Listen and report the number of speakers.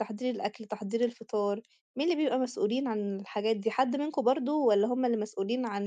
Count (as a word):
one